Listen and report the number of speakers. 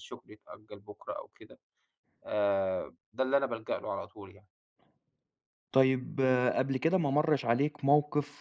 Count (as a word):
two